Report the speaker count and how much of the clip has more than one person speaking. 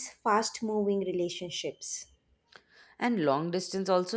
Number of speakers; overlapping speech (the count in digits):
2, no overlap